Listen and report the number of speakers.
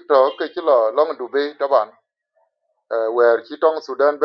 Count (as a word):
one